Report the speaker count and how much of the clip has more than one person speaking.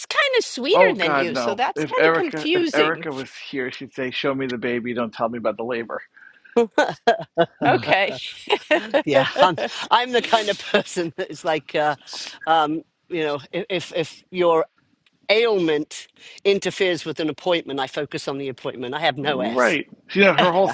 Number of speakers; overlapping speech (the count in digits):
3, about 14%